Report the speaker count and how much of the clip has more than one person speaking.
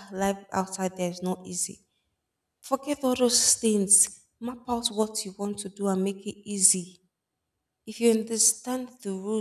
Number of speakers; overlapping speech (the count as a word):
one, no overlap